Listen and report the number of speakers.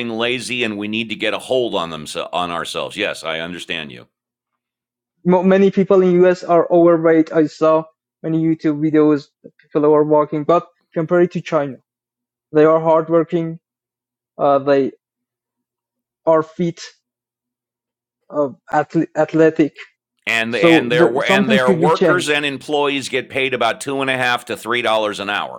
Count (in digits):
2